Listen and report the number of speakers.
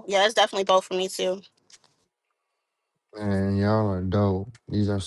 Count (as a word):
two